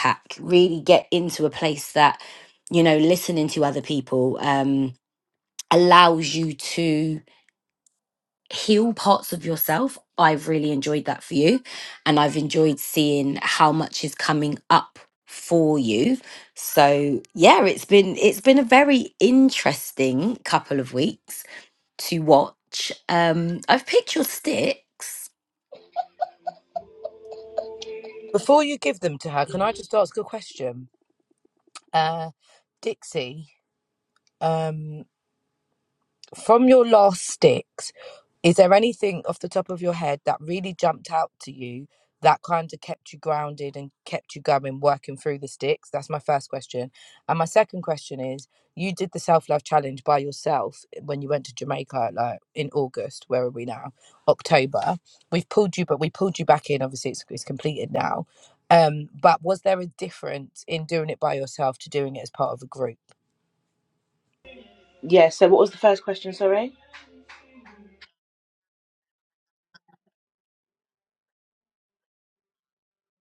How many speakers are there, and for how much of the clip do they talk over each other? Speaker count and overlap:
three, no overlap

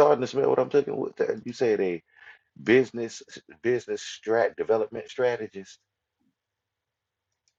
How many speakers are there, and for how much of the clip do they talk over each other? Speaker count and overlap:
one, no overlap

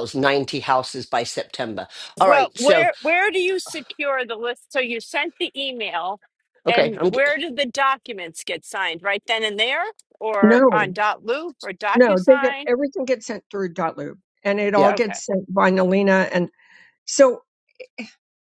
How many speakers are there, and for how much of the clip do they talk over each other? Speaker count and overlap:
three, about 15%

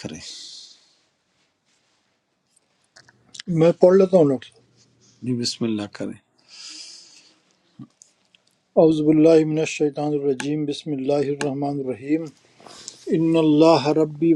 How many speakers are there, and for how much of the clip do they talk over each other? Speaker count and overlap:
two, no overlap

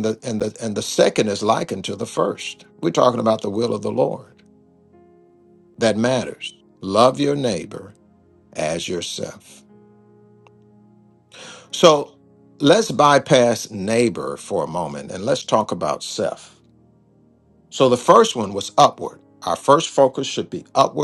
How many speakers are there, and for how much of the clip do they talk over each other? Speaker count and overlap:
one, no overlap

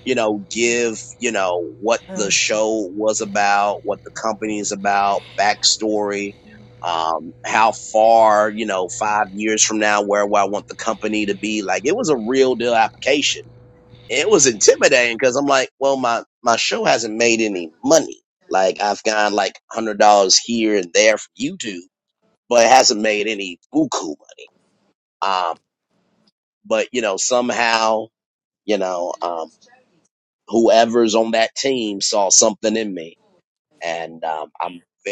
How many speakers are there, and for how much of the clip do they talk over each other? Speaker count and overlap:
one, no overlap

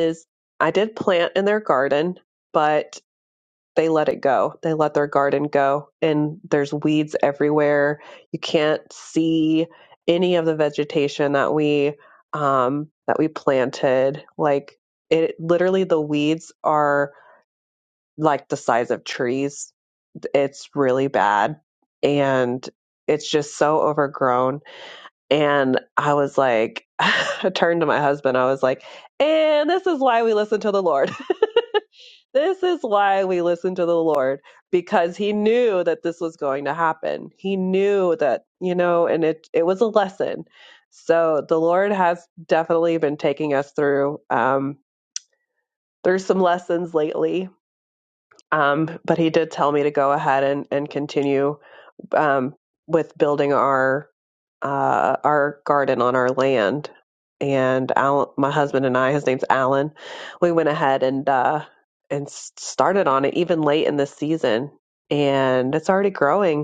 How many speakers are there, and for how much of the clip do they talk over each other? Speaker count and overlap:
one, no overlap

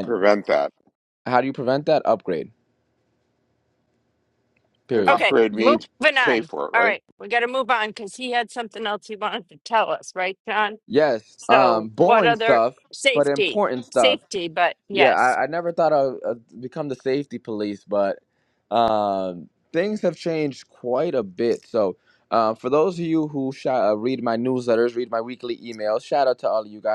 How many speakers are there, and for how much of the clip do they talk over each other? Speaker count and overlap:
three, about 14%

